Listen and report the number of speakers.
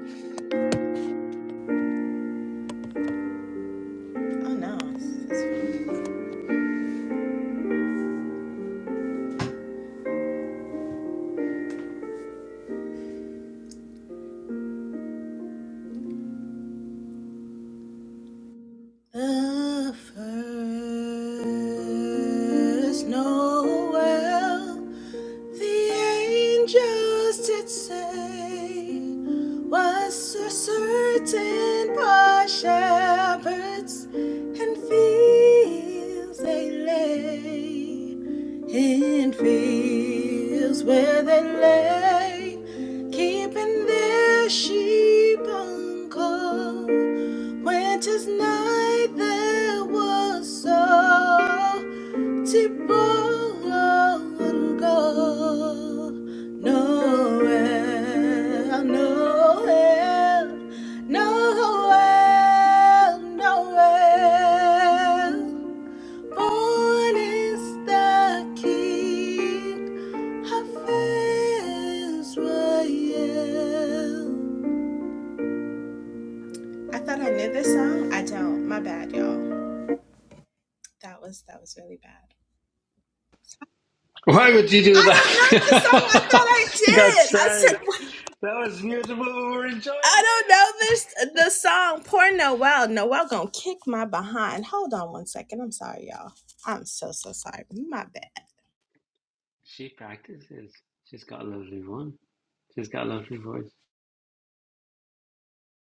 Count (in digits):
2